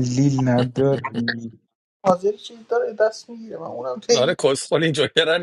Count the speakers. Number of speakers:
3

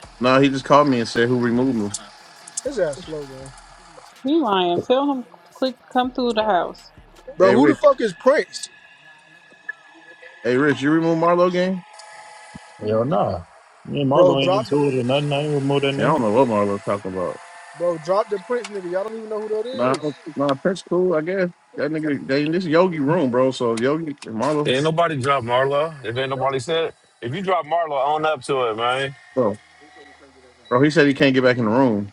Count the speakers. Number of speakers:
5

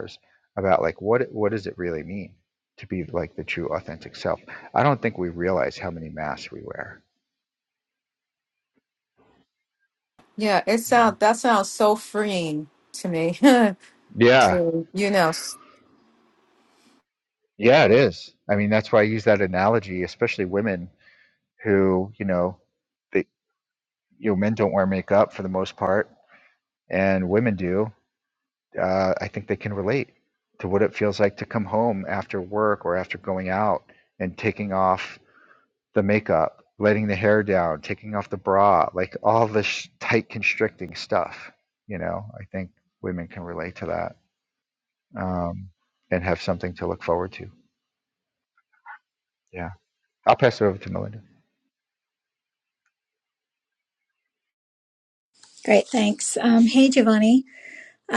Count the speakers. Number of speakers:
3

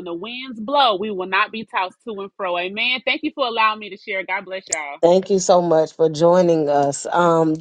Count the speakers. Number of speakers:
2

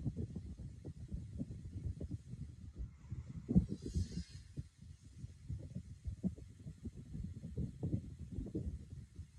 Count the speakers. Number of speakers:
0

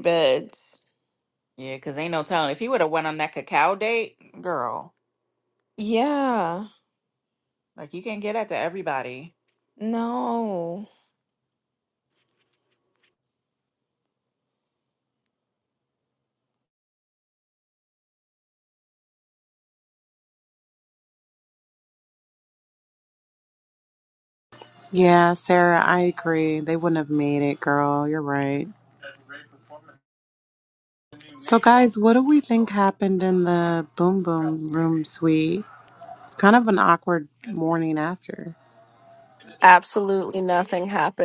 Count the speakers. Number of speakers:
4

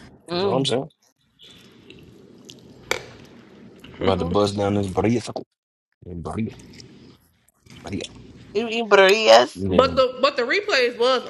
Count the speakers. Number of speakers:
3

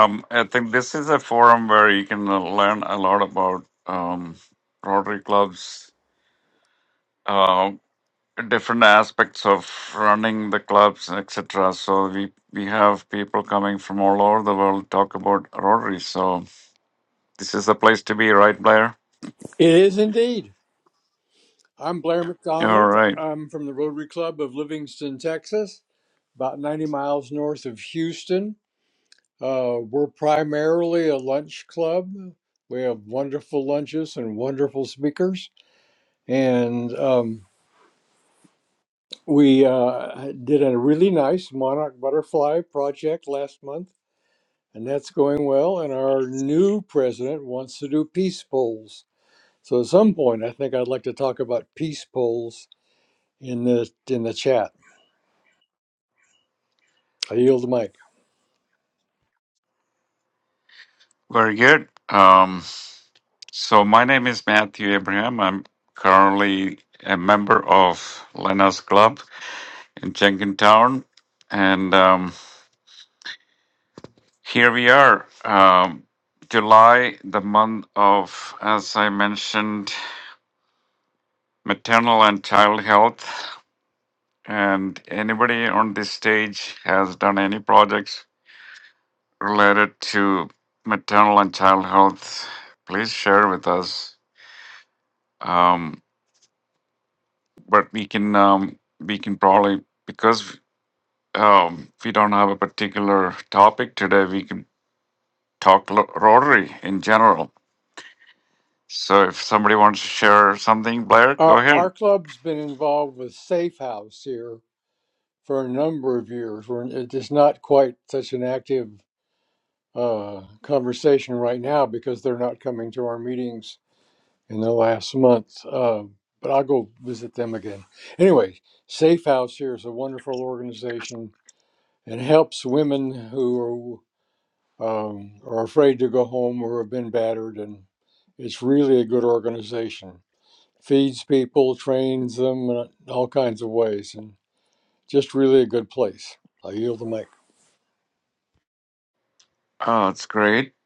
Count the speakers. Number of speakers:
2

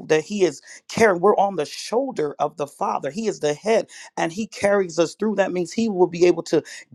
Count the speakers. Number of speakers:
1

